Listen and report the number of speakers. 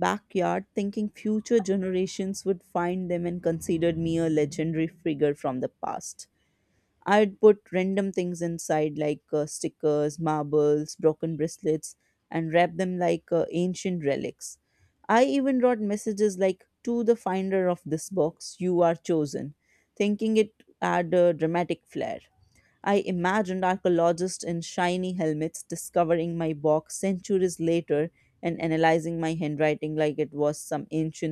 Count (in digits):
1